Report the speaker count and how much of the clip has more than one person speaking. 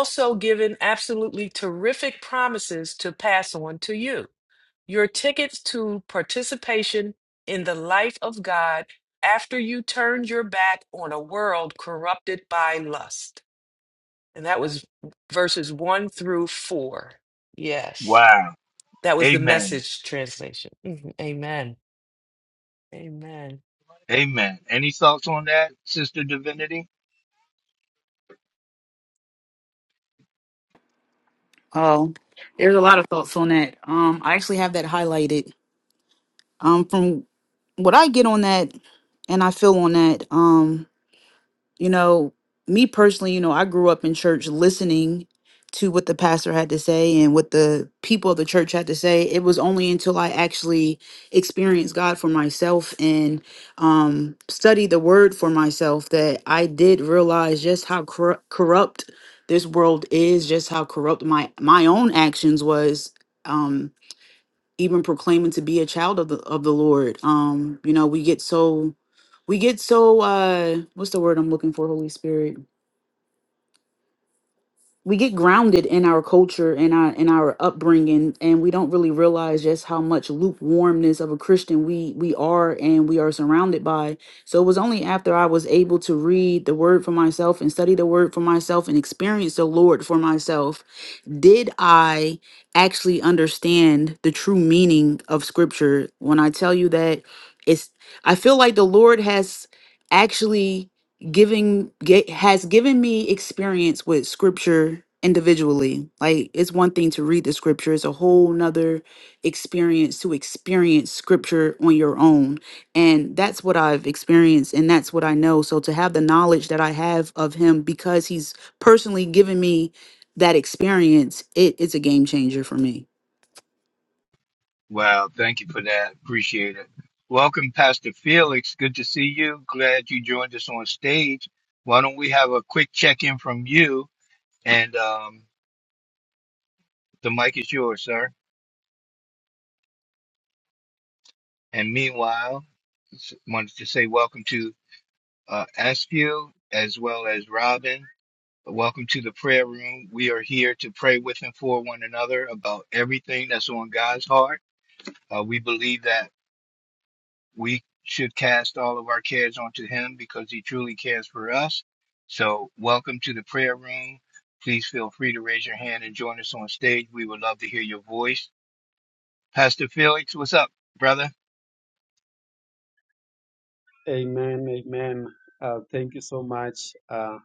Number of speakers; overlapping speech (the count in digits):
4, under 1%